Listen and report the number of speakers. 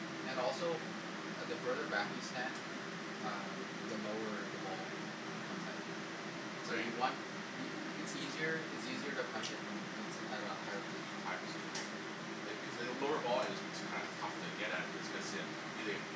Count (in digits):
2